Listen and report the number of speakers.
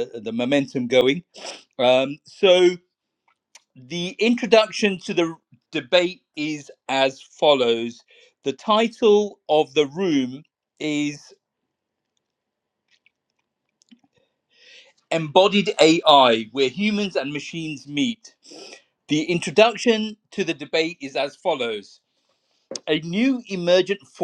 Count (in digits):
1